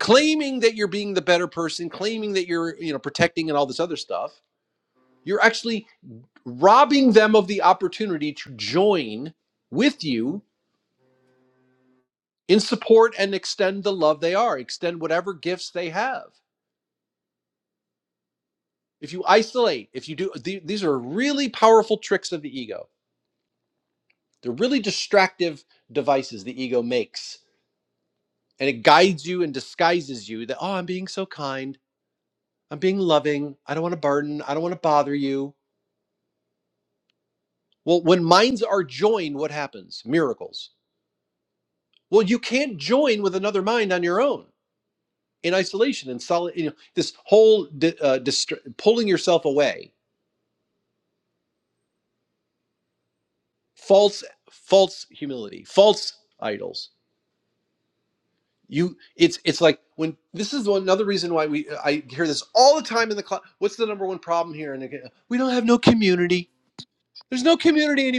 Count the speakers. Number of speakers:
one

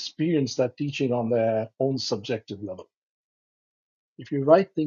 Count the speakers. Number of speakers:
one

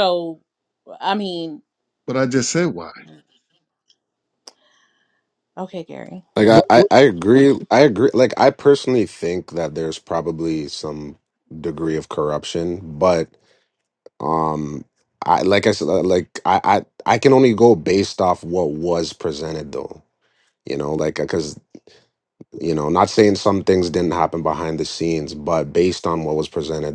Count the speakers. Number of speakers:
three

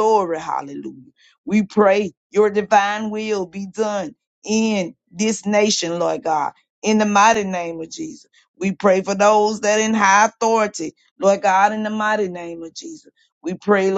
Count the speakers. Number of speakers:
one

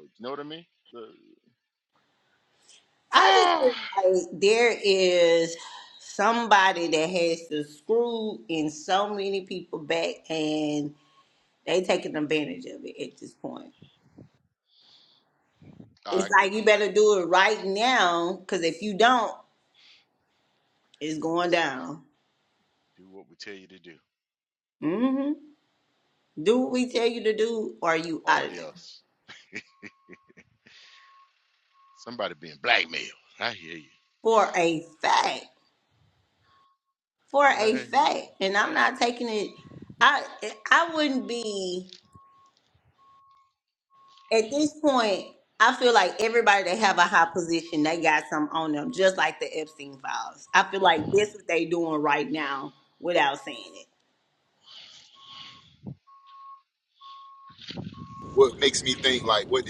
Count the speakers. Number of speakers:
three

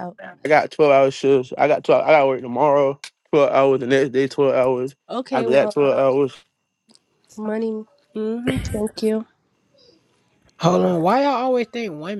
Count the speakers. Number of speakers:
three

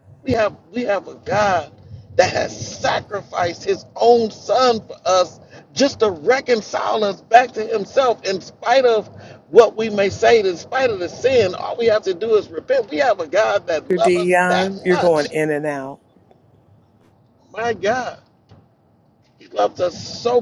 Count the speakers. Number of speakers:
two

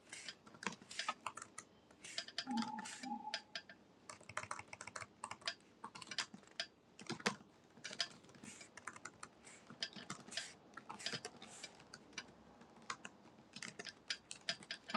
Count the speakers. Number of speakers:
zero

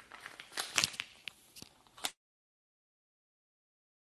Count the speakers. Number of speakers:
zero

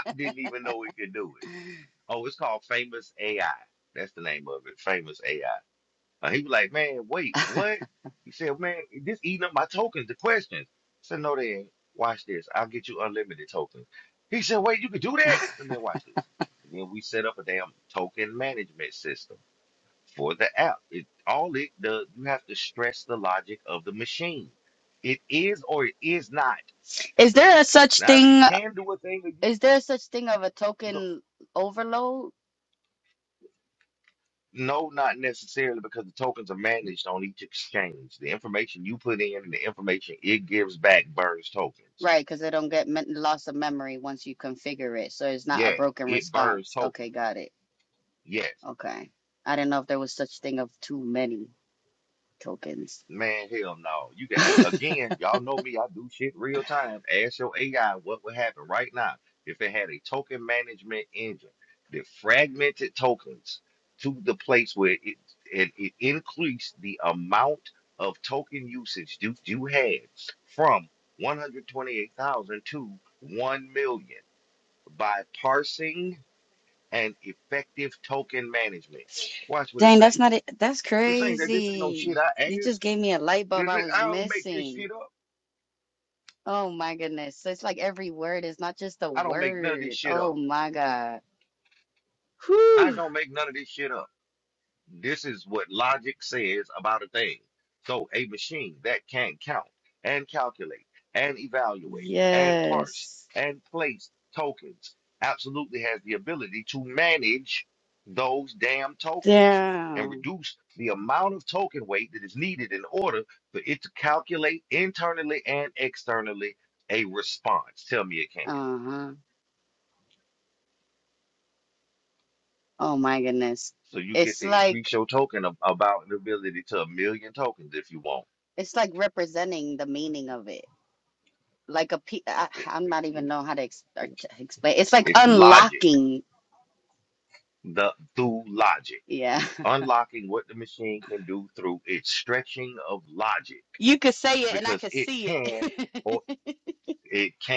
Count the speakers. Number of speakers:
two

